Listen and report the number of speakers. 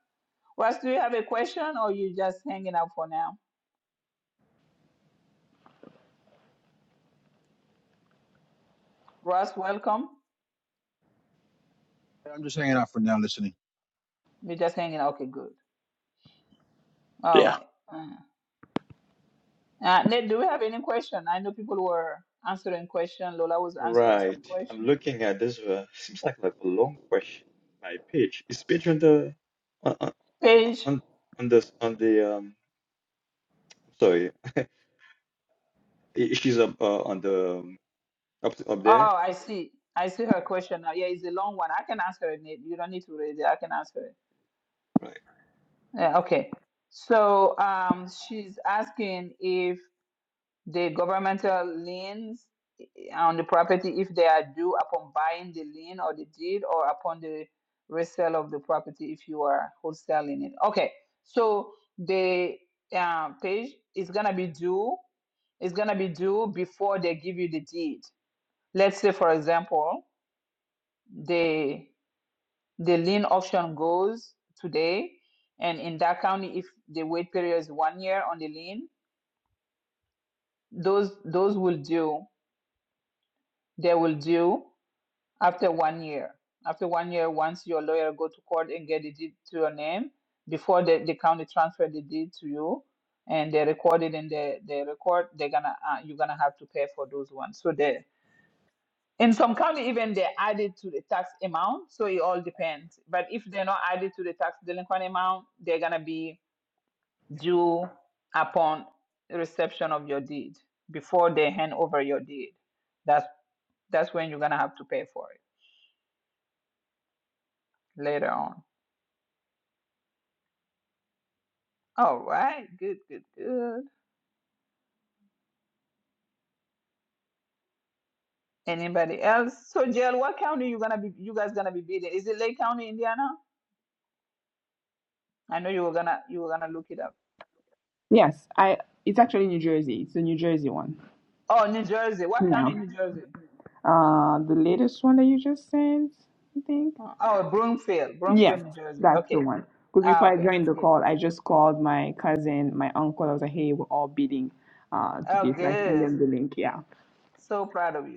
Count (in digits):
4